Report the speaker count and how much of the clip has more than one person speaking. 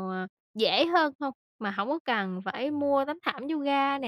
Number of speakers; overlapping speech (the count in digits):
1, no overlap